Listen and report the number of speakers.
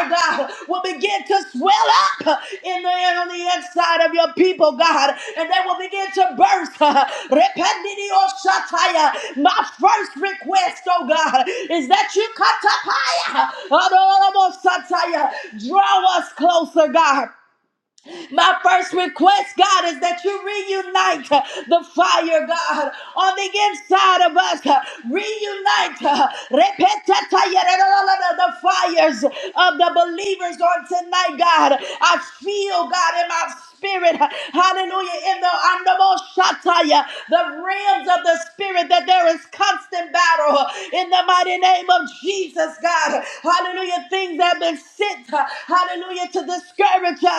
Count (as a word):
one